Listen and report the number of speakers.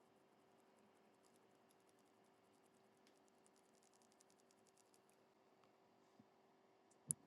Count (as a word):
zero